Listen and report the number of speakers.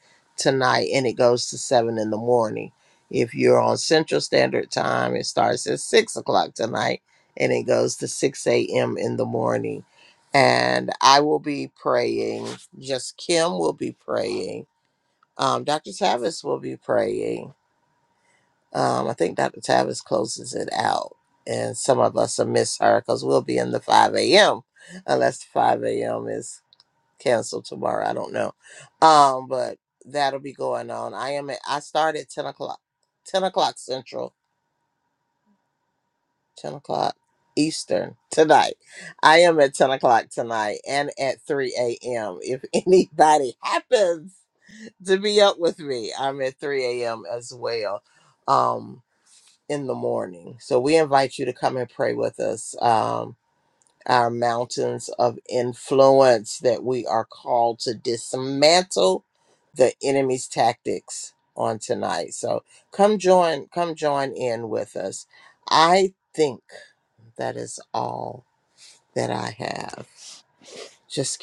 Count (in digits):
1